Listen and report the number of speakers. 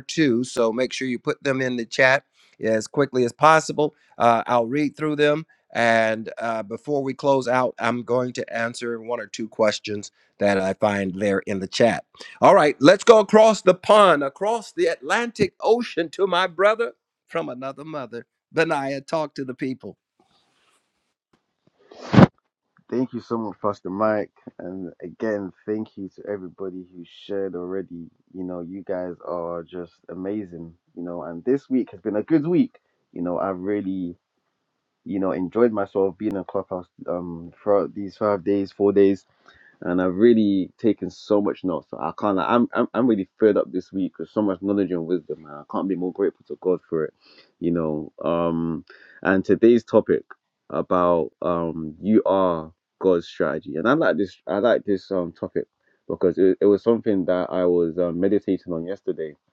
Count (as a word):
two